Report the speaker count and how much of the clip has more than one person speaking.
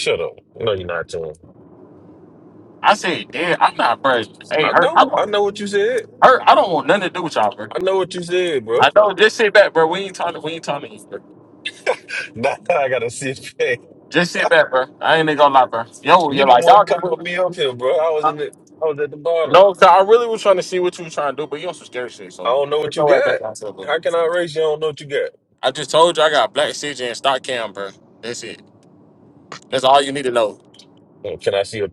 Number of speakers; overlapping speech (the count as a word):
two, about 8%